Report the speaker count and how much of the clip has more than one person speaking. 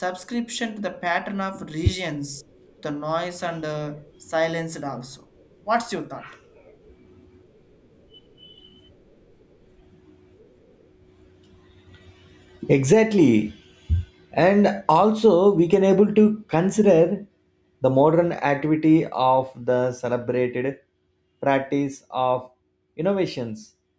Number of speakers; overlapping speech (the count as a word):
two, no overlap